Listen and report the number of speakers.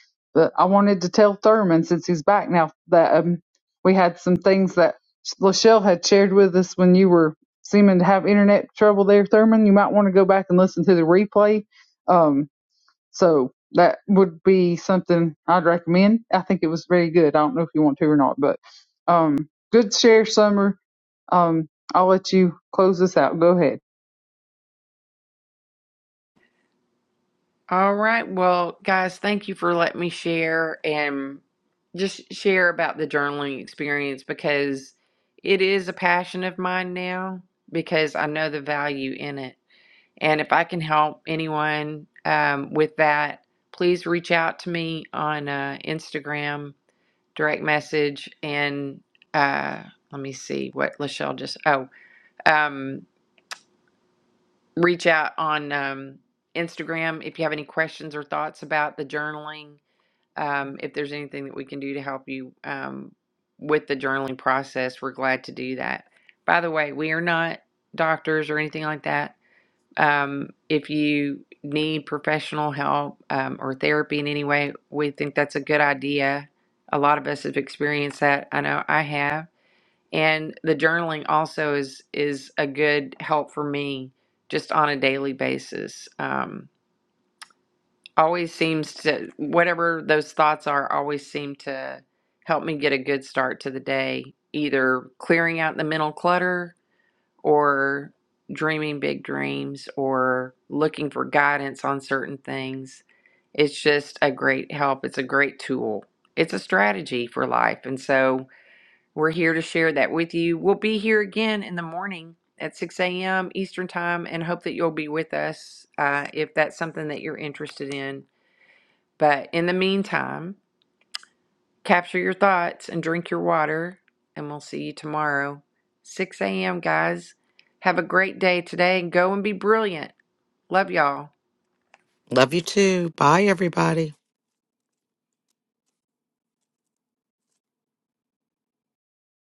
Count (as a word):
three